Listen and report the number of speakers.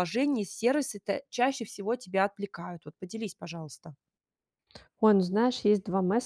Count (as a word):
two